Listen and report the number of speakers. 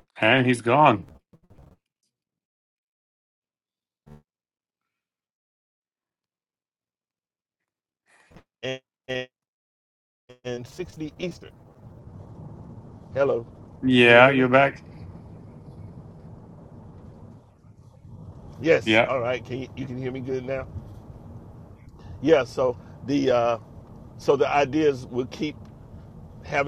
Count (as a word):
two